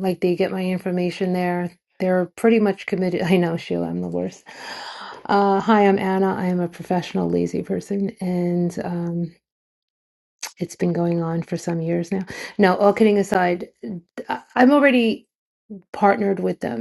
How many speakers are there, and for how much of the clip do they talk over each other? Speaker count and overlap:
1, no overlap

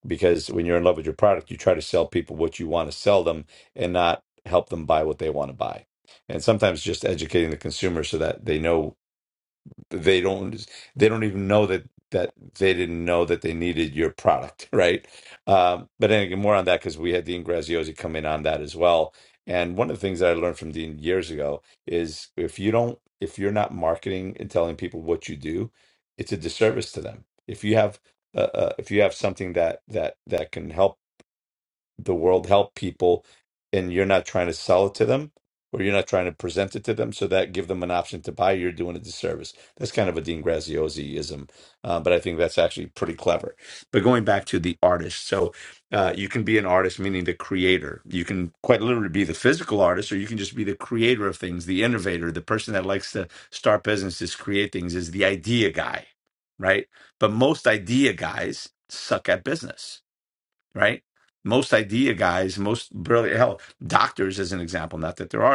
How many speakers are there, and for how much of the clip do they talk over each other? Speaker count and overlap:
1, no overlap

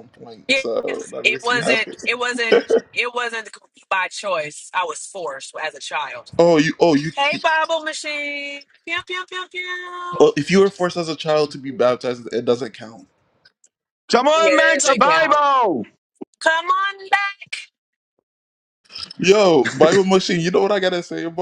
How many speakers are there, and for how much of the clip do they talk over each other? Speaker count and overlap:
3, about 10%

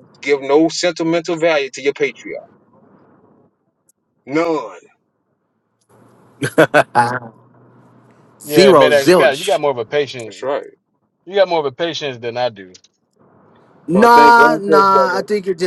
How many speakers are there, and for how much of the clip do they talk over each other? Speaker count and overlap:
3, about 16%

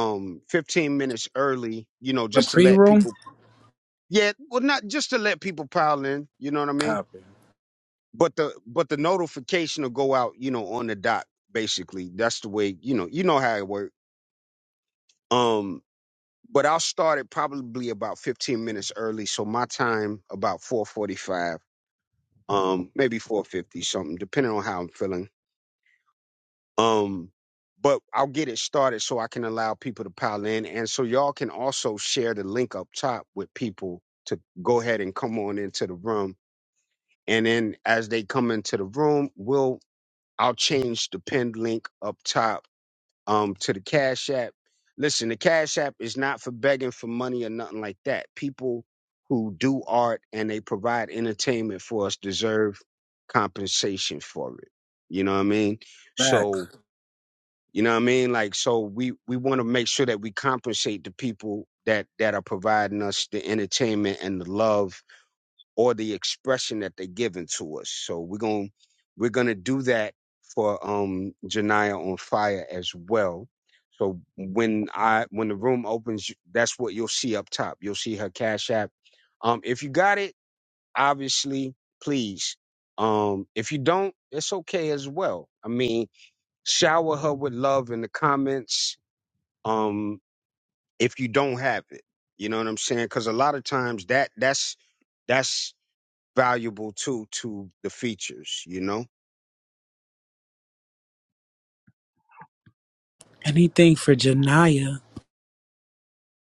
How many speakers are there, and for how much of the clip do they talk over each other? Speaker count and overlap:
2, about 1%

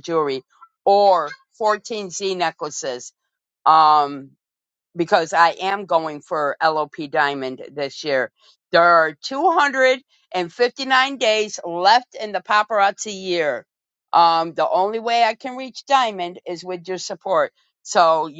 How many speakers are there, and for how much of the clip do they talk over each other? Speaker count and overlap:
1, no overlap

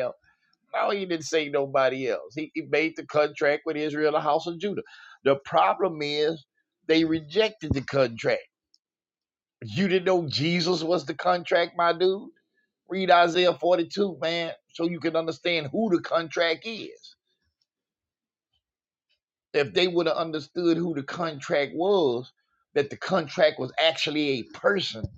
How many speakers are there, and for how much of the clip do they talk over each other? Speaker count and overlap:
1, no overlap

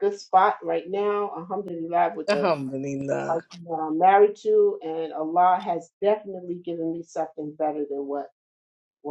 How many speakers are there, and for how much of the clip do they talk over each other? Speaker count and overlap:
2, about 3%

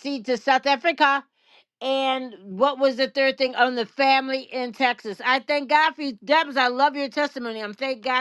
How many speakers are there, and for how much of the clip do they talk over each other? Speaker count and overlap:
1, no overlap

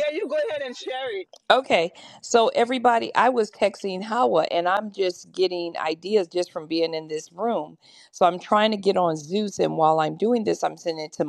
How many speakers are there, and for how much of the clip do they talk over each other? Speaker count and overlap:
2, no overlap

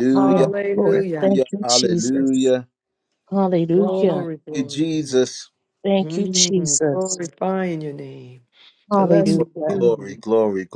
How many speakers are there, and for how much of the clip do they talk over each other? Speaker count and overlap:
3, about 51%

